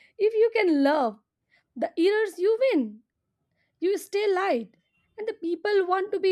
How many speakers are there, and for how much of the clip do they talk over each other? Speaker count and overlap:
one, no overlap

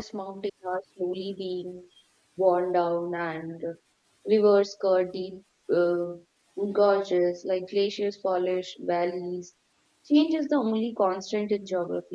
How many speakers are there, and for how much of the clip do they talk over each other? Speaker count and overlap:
one, no overlap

